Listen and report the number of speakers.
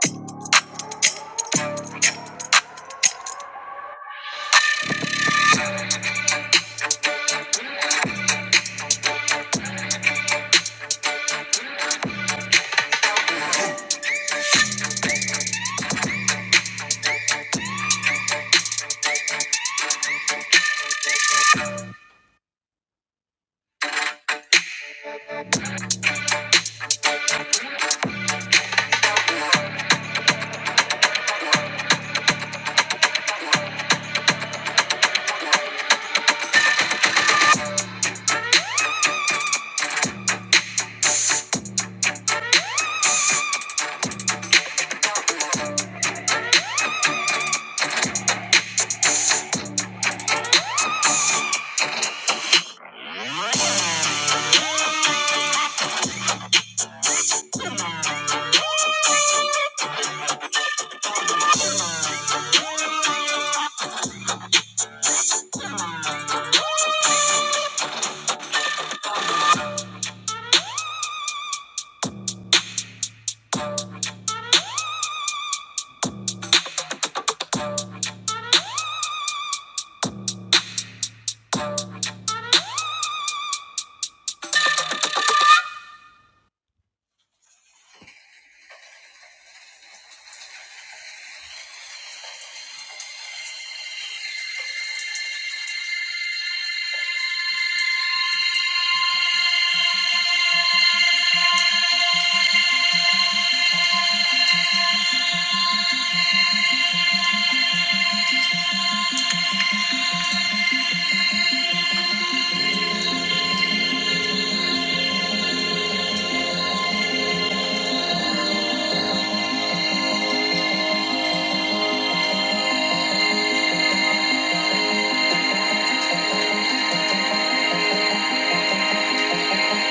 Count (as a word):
zero